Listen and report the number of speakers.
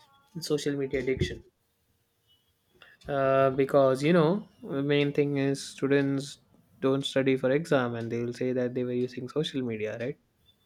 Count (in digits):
1